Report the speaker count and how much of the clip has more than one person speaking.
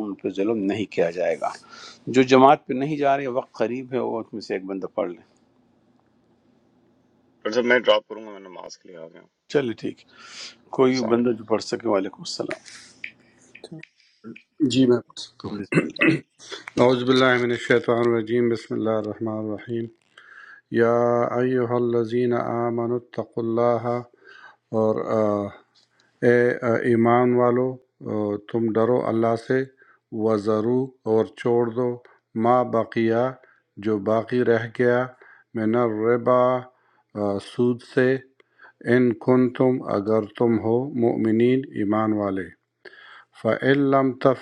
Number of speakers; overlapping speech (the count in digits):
3, about 2%